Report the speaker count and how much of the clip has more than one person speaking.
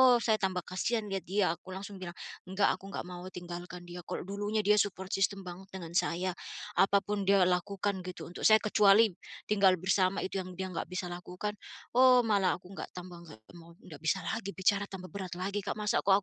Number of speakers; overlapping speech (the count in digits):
1, no overlap